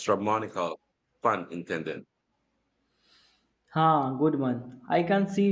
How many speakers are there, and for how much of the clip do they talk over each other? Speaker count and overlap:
two, no overlap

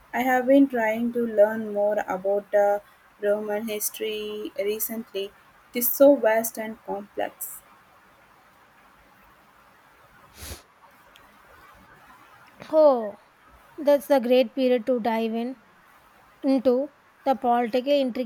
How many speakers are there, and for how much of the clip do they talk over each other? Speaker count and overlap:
two, no overlap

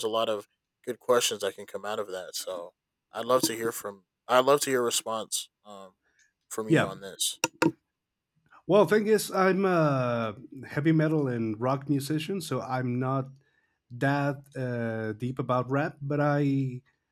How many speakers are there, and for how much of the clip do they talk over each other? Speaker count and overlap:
two, about 1%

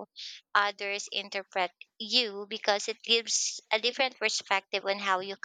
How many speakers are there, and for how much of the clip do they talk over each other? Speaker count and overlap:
one, no overlap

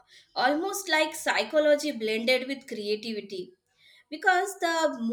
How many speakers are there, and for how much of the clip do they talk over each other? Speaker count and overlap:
one, no overlap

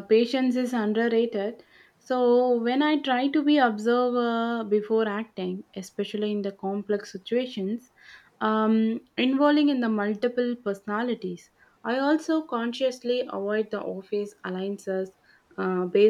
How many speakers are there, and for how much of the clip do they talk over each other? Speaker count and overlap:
one, no overlap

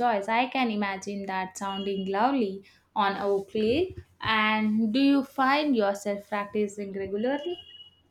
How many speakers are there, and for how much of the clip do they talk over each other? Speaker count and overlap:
one, no overlap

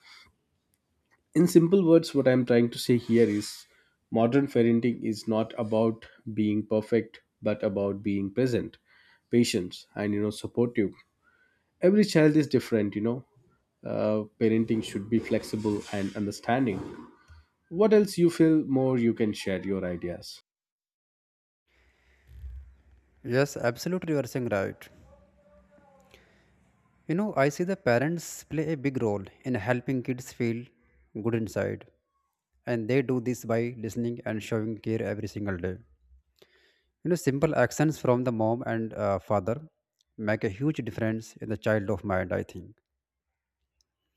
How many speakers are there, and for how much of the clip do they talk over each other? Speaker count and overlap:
two, no overlap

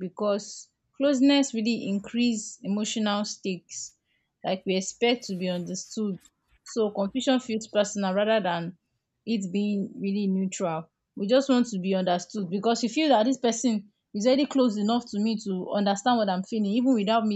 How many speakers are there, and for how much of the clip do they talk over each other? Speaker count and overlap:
one, no overlap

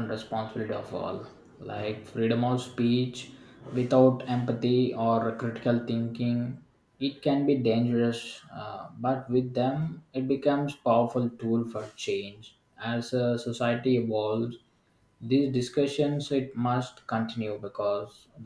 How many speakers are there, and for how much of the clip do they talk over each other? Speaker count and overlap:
one, no overlap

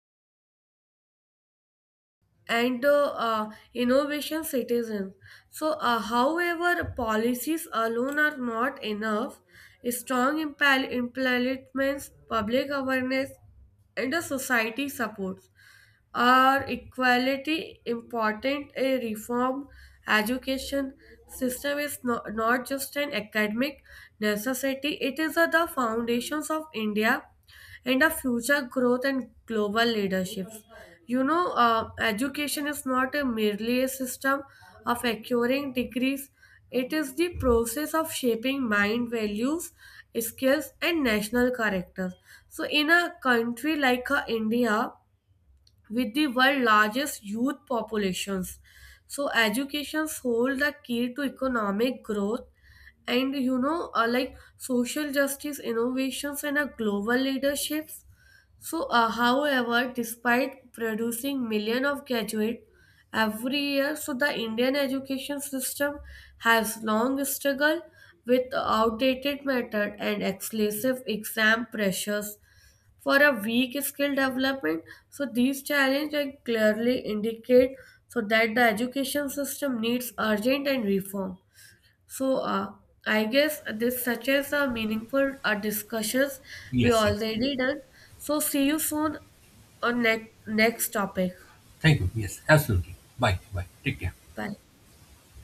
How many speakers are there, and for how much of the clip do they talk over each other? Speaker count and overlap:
two, under 1%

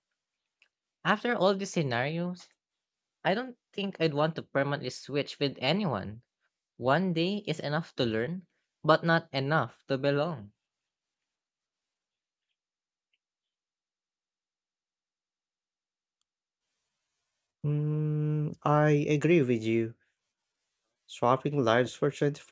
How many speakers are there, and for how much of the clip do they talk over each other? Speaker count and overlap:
two, no overlap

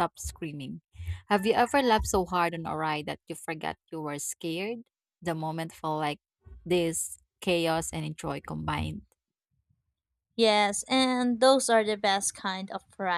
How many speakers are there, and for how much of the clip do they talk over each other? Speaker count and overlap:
two, no overlap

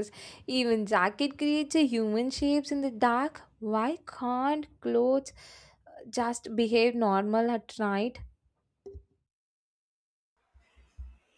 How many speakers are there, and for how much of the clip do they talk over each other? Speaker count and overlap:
one, no overlap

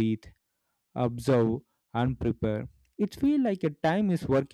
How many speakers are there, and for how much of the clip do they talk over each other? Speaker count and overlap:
one, no overlap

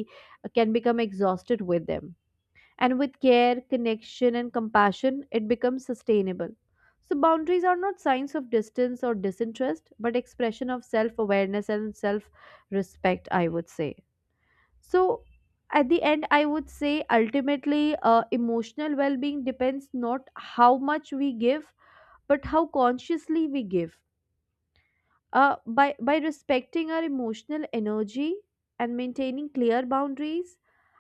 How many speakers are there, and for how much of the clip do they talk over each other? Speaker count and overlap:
one, no overlap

